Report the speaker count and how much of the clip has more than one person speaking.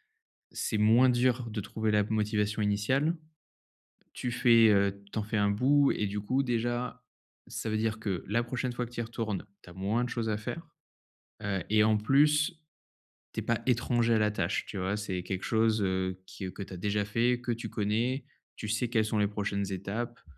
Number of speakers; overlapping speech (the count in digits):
1, no overlap